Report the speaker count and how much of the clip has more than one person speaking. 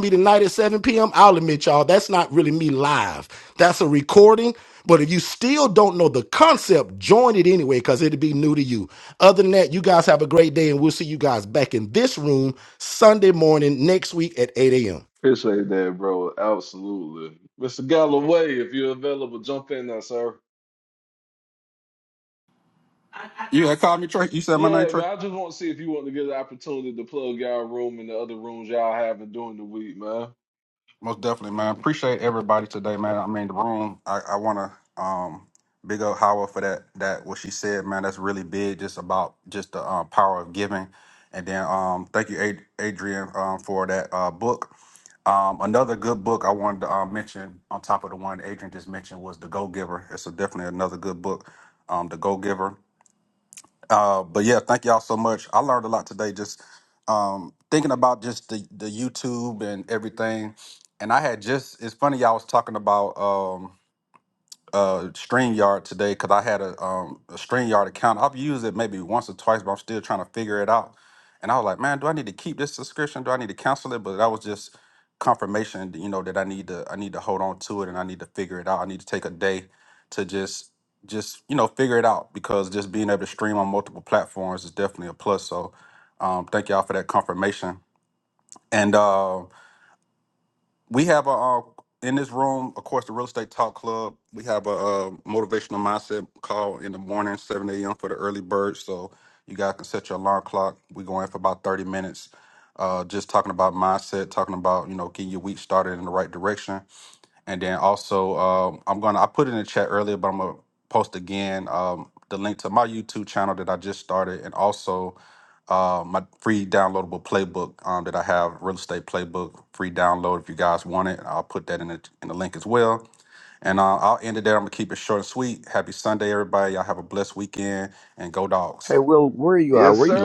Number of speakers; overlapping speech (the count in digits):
4, about 1%